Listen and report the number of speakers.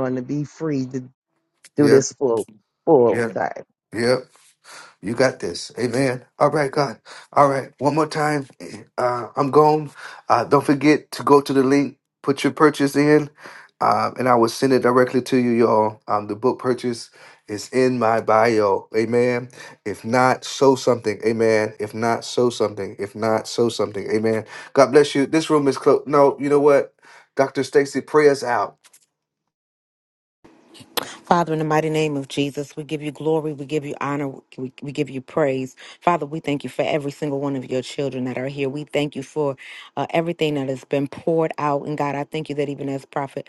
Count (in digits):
3